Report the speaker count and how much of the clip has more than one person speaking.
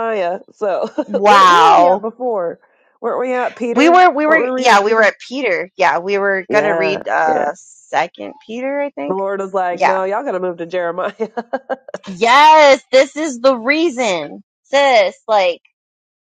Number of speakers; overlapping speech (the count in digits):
2, about 23%